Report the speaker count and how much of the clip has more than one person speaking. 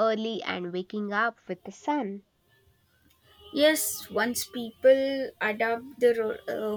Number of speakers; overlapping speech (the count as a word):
two, no overlap